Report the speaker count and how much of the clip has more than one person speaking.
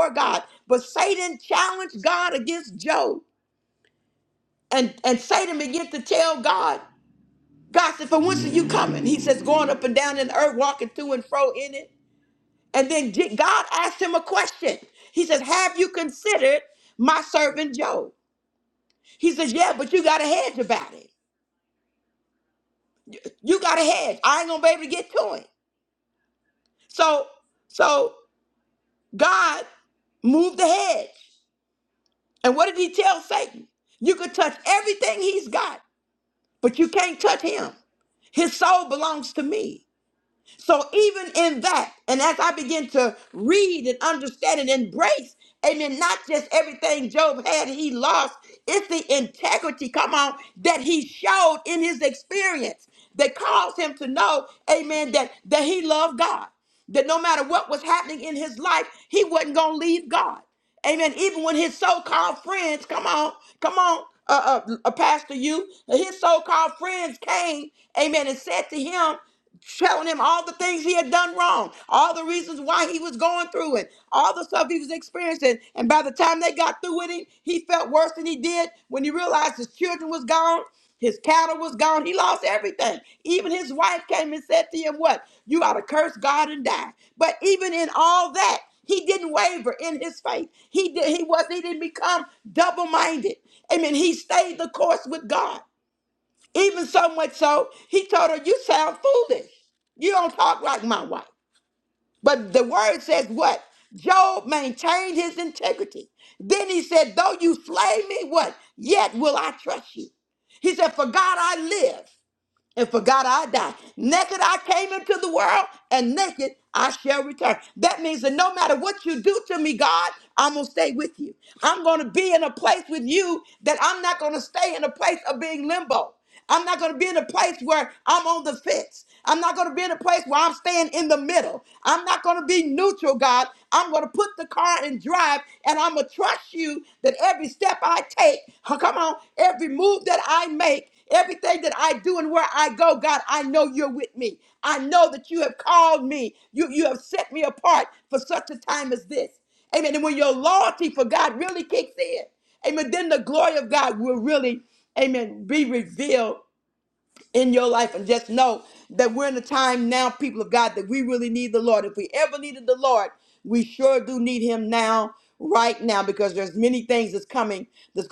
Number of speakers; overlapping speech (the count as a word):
one, no overlap